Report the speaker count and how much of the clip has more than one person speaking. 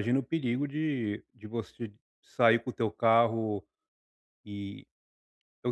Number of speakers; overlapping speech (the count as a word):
one, no overlap